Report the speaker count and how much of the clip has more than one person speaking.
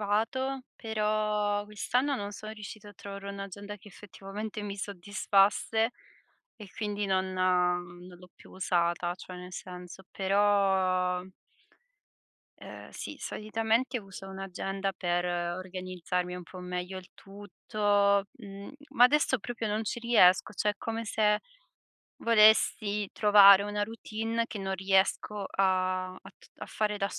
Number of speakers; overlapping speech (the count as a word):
one, no overlap